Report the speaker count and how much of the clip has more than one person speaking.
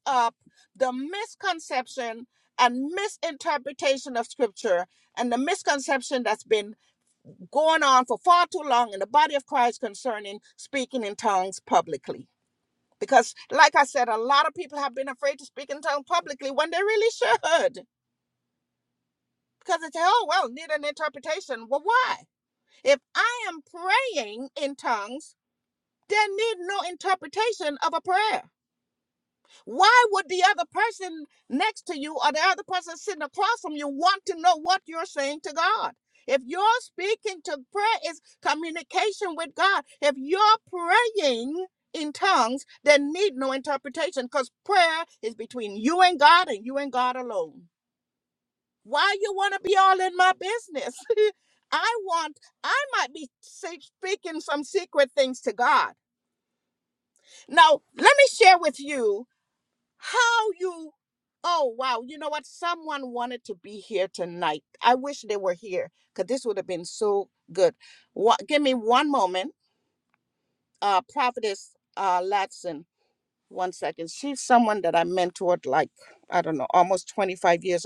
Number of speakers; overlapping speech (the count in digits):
1, no overlap